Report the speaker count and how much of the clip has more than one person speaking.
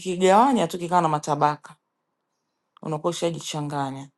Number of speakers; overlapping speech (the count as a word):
one, no overlap